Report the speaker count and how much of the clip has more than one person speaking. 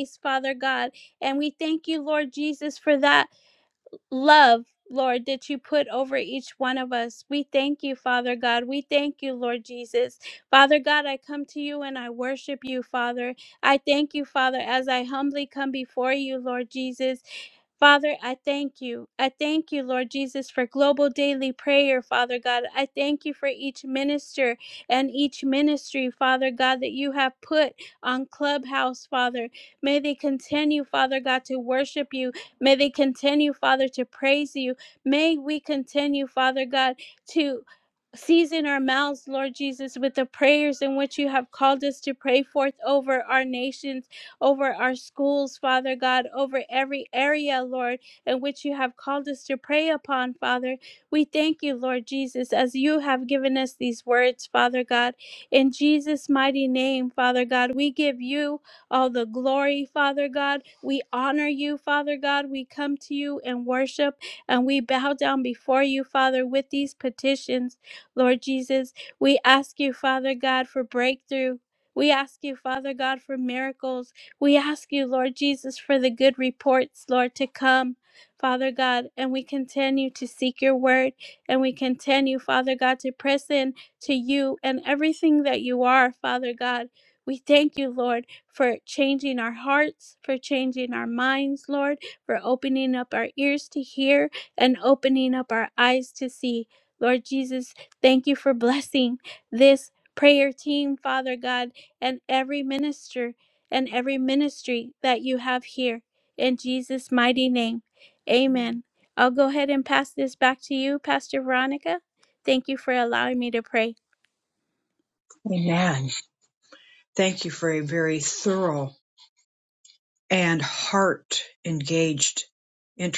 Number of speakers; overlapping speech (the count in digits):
2, no overlap